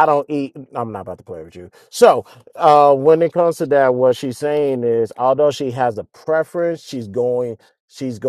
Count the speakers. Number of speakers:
1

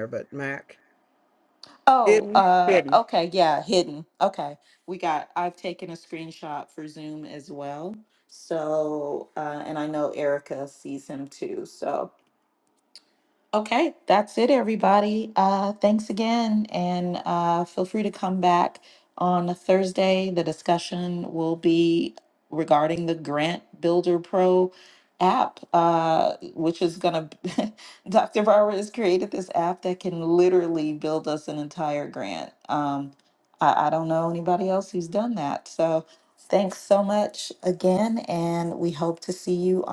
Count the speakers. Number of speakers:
2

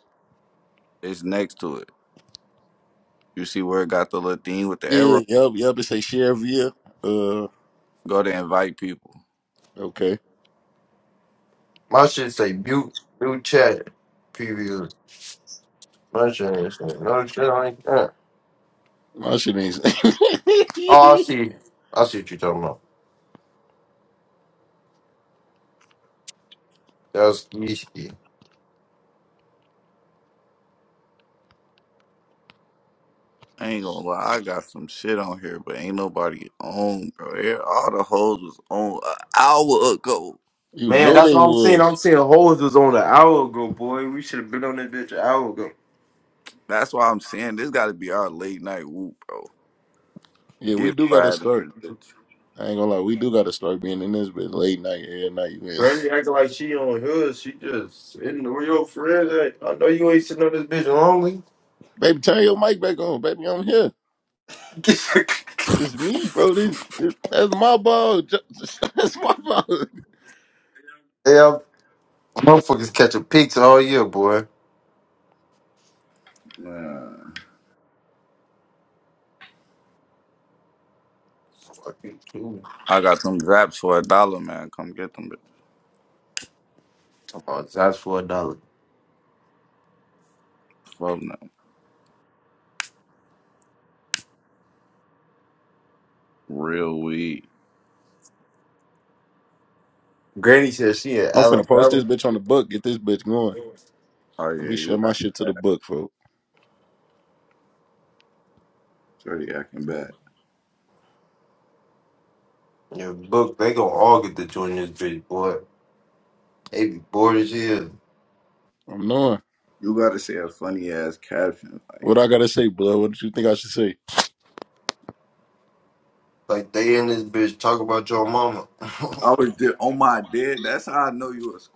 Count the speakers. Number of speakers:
3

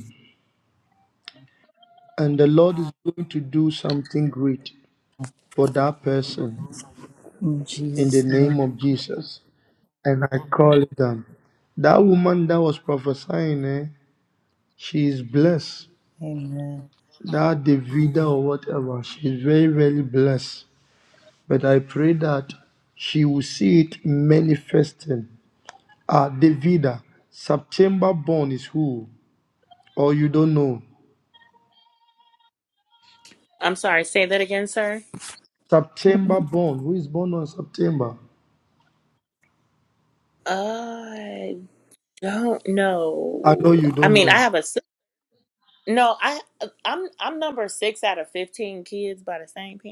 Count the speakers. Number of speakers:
3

